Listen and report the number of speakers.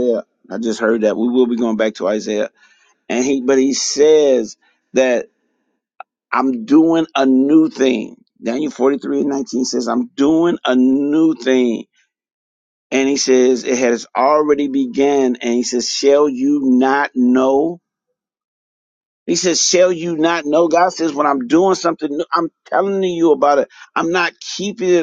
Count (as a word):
one